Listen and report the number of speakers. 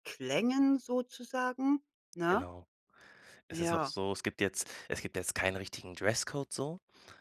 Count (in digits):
2